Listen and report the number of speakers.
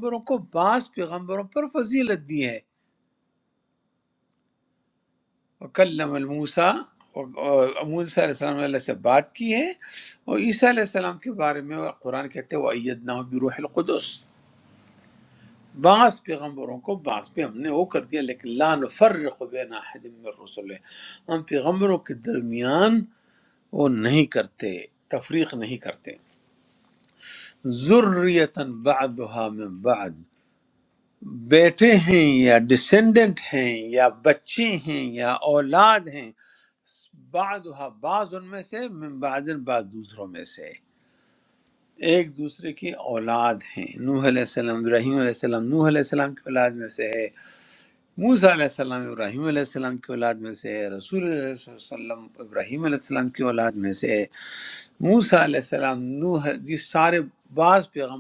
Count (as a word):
one